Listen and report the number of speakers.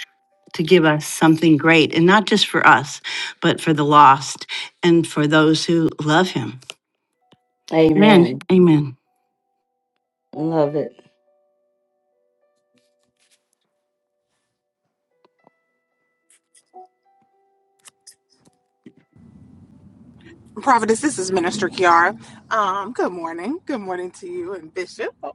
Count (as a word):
three